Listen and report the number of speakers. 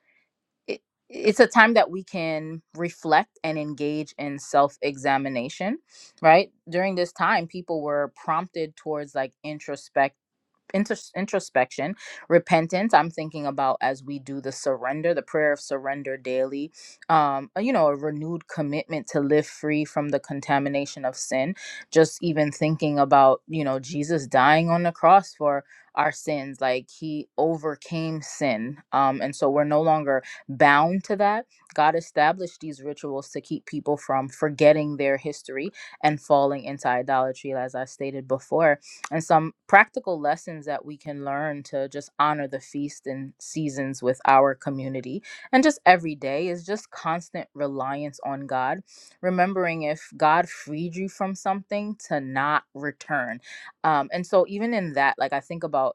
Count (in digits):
1